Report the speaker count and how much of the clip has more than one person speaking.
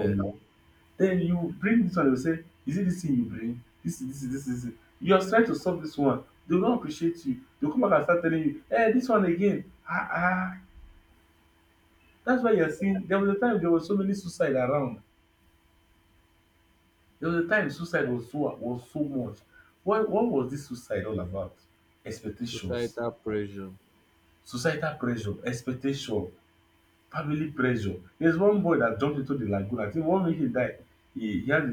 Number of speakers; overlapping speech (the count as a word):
two, about 2%